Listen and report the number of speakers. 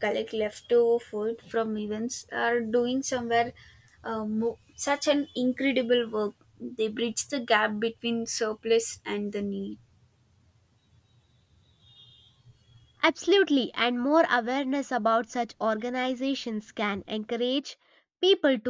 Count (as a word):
two